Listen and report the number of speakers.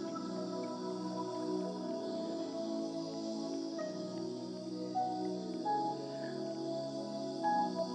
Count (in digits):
0